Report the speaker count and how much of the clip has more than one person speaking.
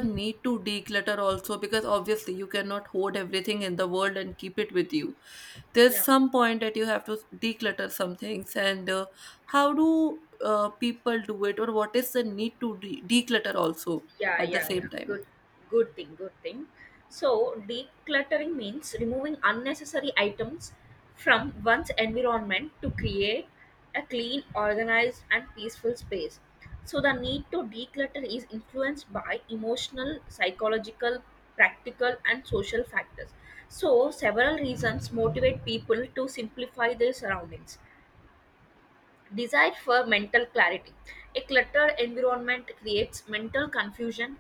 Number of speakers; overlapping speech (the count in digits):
2, about 2%